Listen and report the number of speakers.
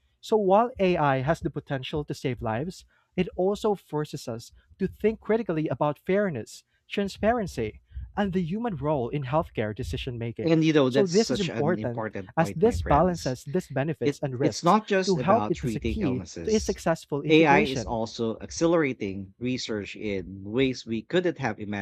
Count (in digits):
2